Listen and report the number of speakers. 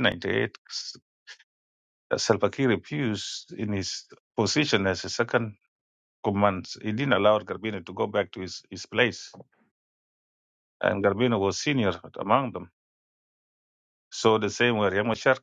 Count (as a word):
one